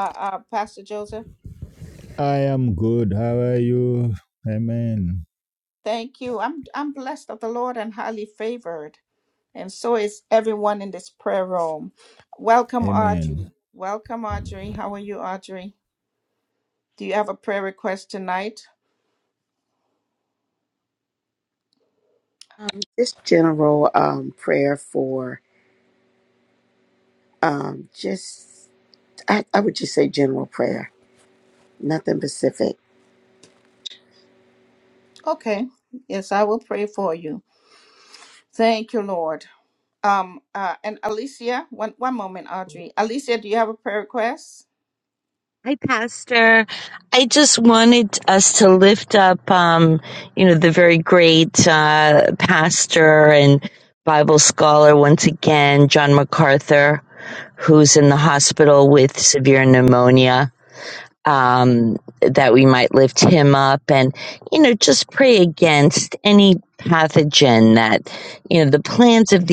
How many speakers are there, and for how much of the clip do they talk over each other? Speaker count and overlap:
four, about 1%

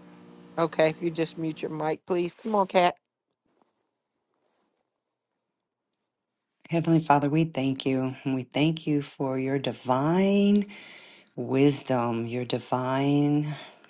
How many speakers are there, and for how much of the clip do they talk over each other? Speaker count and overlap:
two, no overlap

